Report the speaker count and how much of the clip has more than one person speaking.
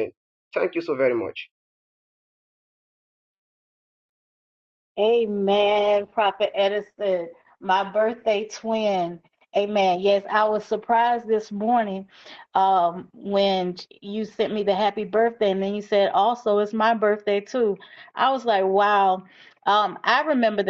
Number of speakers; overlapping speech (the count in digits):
2, no overlap